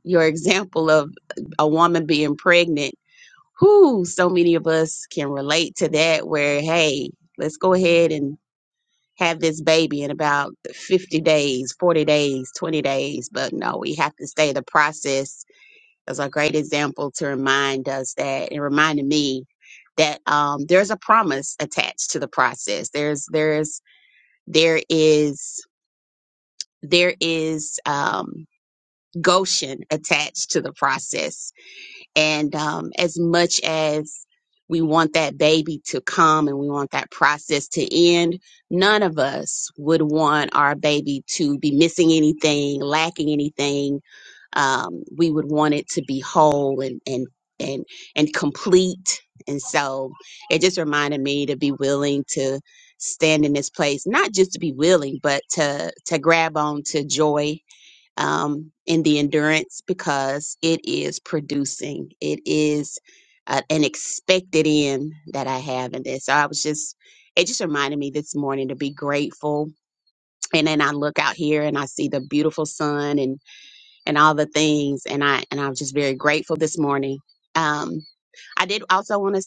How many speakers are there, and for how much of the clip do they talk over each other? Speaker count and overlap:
1, no overlap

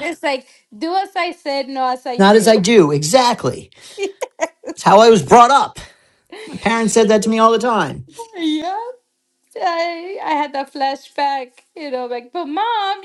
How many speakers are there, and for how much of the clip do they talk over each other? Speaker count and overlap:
2, about 4%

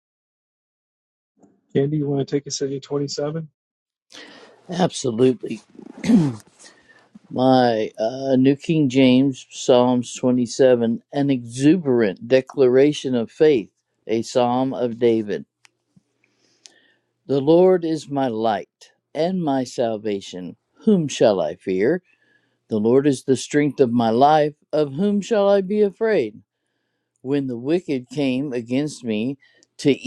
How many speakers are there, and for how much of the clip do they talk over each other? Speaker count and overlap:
2, no overlap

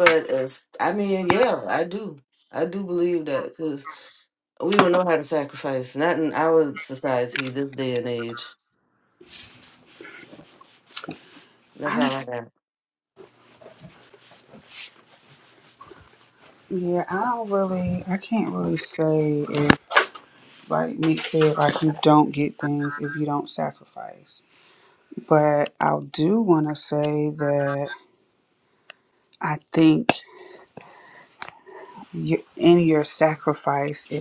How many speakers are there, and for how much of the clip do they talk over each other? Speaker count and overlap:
2, about 1%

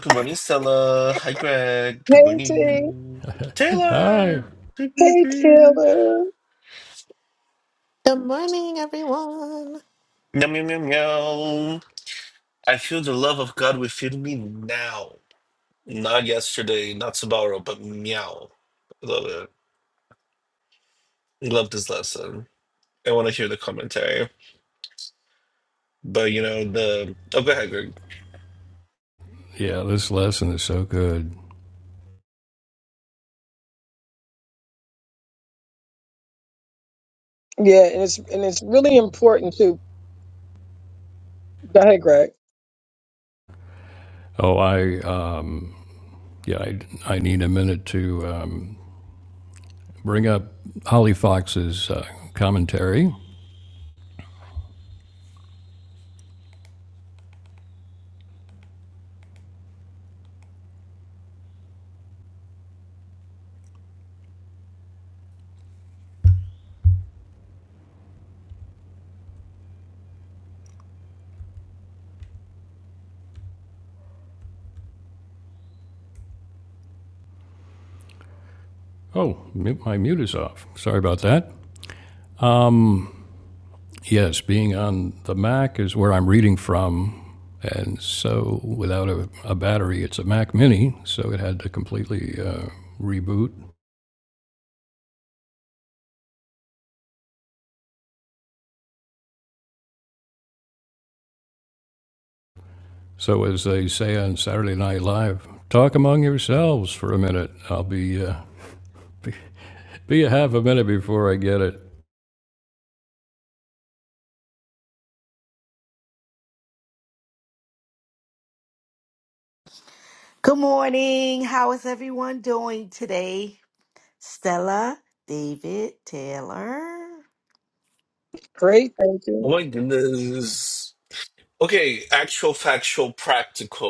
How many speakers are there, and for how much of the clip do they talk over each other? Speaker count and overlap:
5, about 2%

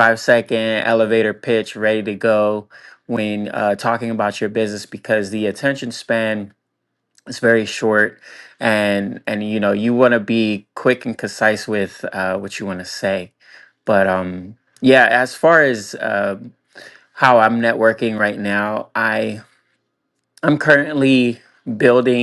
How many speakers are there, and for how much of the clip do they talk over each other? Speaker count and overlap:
1, no overlap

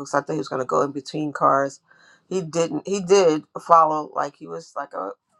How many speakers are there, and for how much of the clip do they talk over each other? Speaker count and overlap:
1, no overlap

